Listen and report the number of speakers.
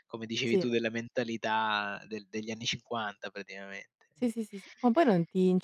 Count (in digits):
2